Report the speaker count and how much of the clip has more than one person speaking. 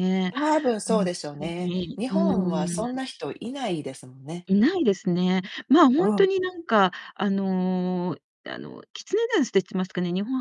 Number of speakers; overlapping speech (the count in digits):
2, about 21%